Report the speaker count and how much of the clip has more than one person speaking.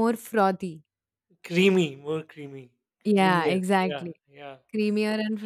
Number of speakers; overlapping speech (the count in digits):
2, about 16%